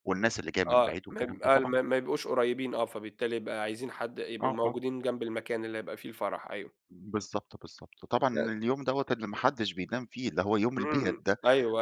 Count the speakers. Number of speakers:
2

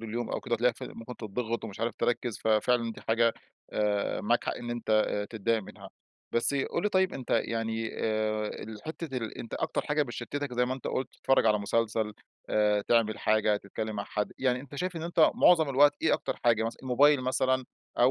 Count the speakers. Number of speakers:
1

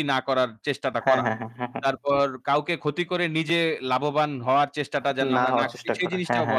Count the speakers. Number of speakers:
2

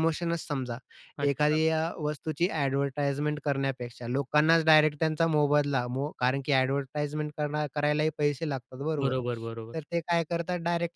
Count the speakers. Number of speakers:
2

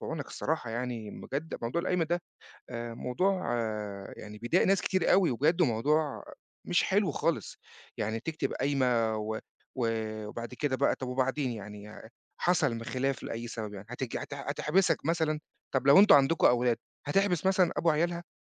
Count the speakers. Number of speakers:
1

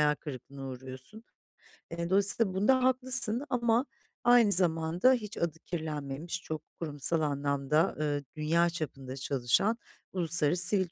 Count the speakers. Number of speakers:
1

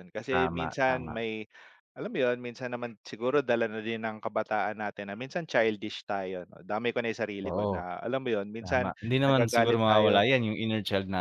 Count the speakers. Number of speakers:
2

